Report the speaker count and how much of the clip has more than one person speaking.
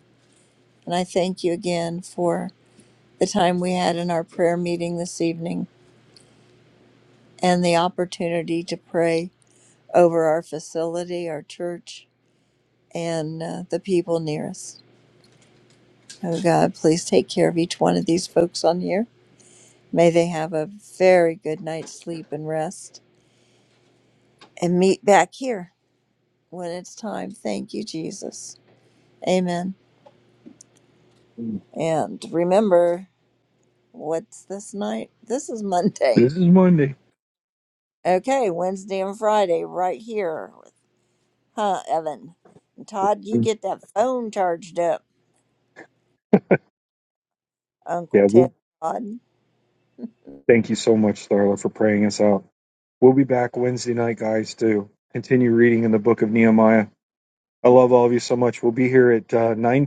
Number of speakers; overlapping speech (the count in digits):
2, about 1%